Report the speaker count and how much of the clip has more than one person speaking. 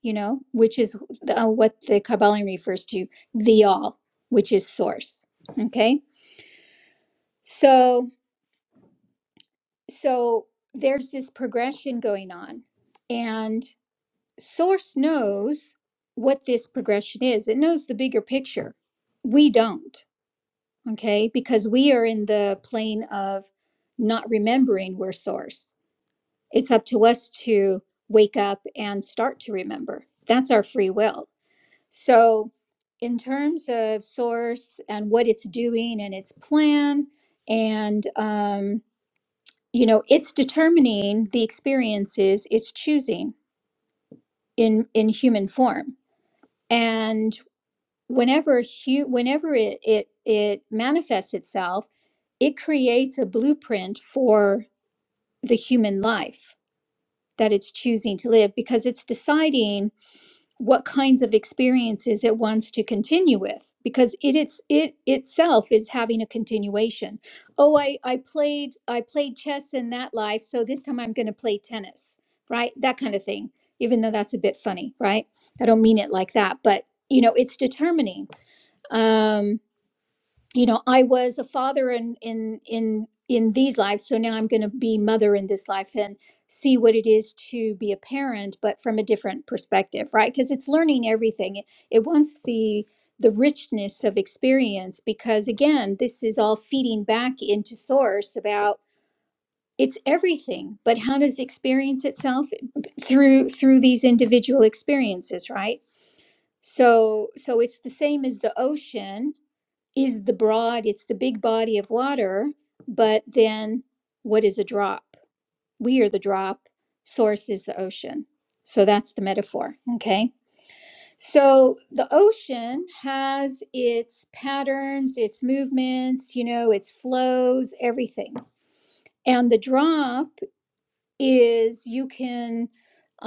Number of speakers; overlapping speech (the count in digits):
1, no overlap